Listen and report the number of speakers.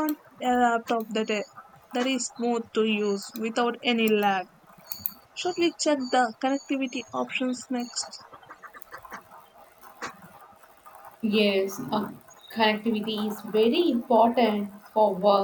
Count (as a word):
two